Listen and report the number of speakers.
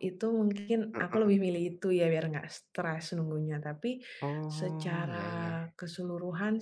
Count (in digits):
2